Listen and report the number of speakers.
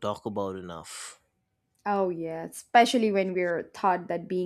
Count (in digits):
2